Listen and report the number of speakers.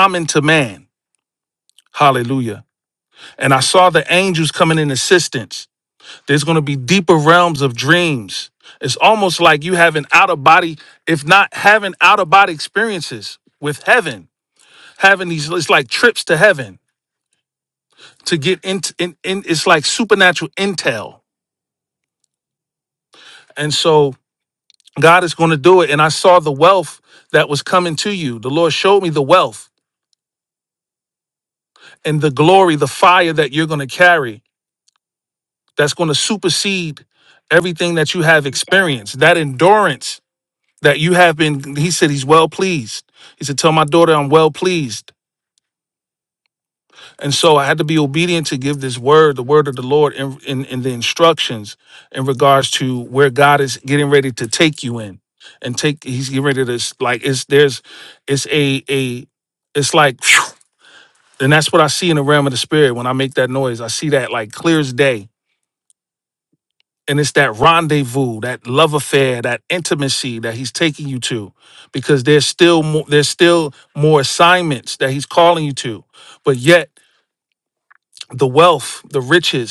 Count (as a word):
one